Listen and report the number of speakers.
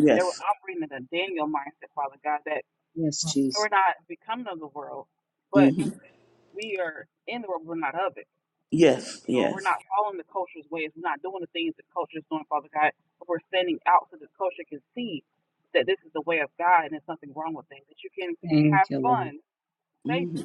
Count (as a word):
three